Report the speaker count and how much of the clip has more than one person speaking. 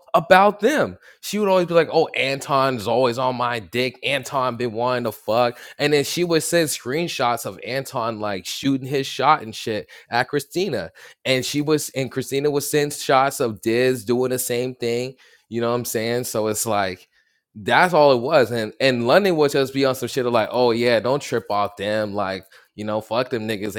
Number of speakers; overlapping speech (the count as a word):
one, no overlap